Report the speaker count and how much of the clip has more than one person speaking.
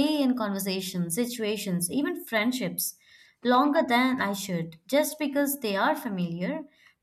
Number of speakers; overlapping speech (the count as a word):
one, no overlap